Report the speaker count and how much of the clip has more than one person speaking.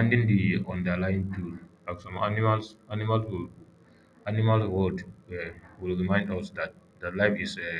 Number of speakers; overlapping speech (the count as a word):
one, no overlap